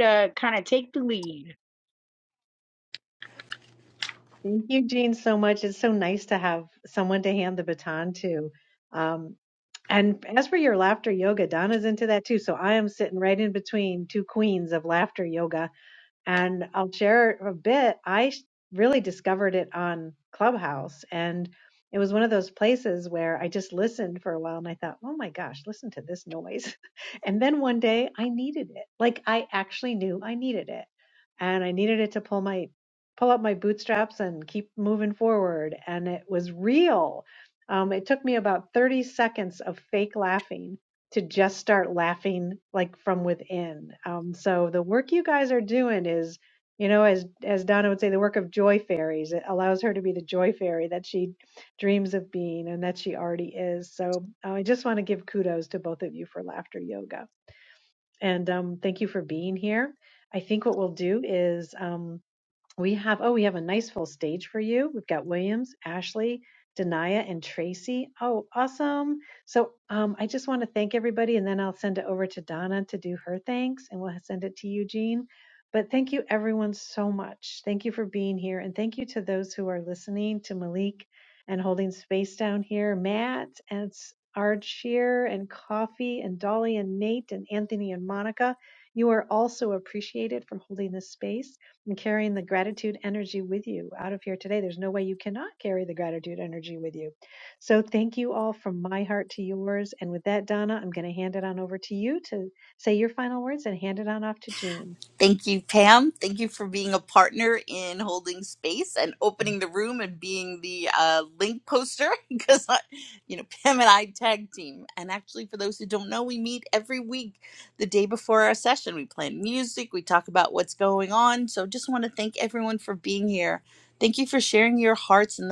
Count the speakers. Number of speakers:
three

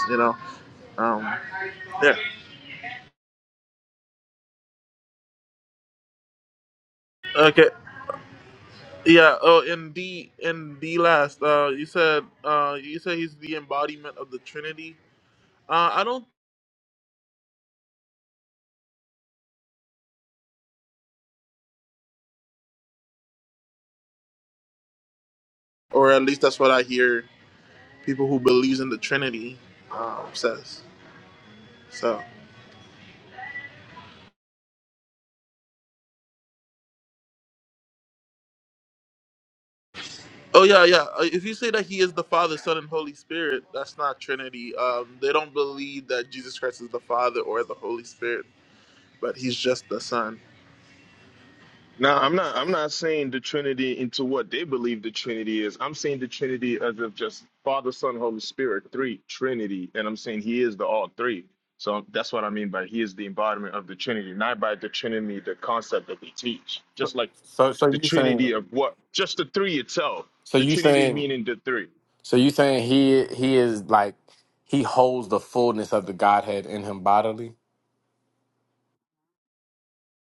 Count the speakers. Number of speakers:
three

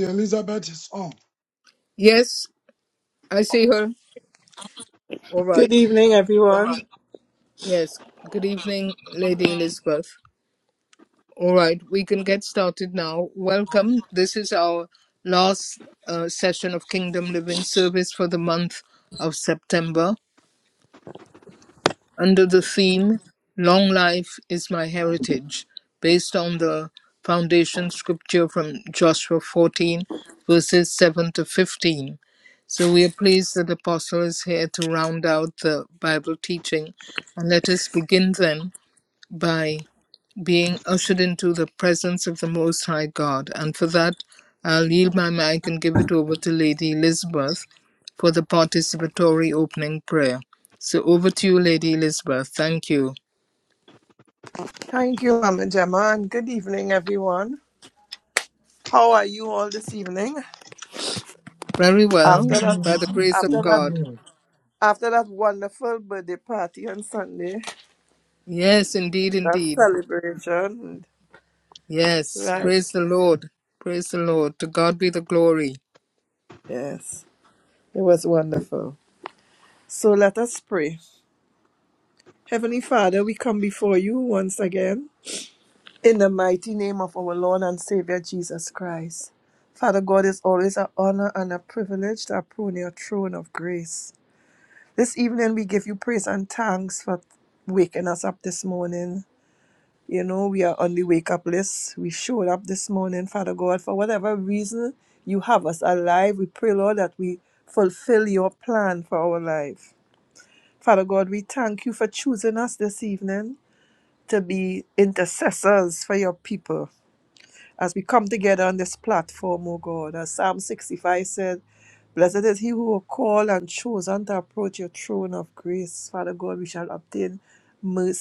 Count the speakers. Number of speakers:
three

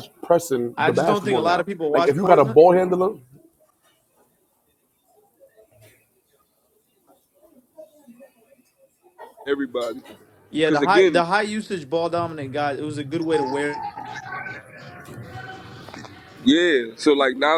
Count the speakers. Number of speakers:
three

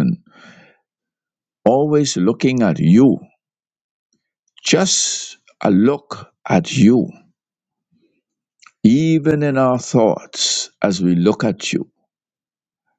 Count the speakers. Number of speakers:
one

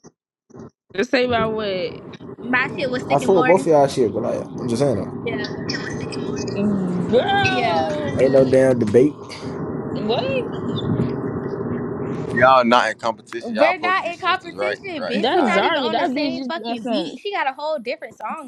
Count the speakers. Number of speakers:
four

